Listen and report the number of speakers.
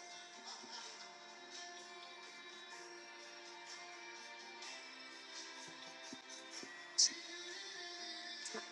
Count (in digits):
0